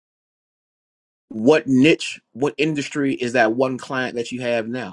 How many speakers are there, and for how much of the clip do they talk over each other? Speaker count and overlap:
1, no overlap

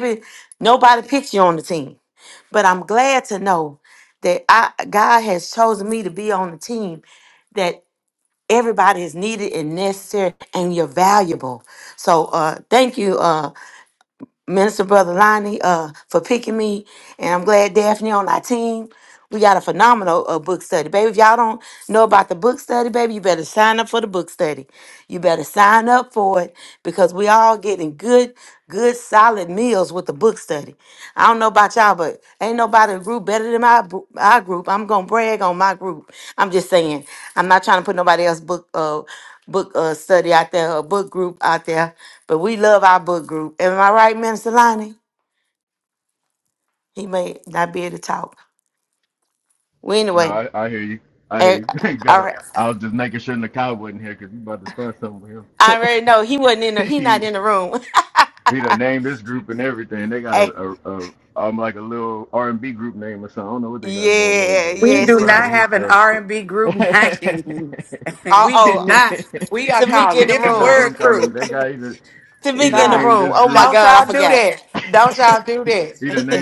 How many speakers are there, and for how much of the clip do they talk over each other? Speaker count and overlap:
3, about 11%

